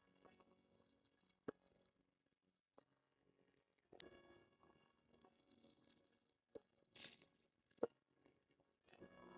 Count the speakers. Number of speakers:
zero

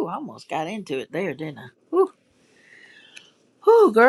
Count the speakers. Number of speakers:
one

